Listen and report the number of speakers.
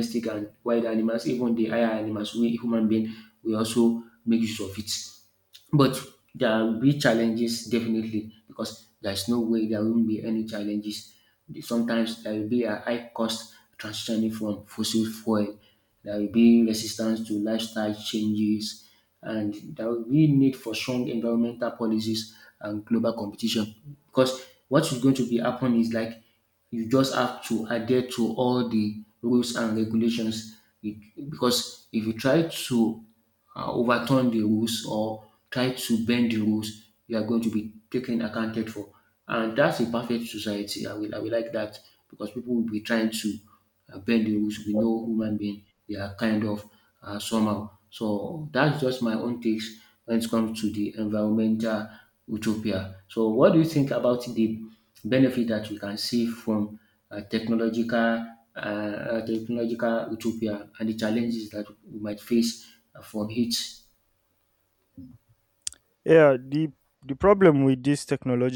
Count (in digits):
2